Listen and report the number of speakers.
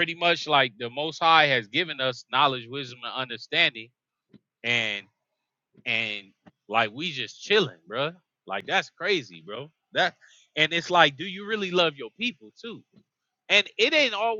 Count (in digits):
1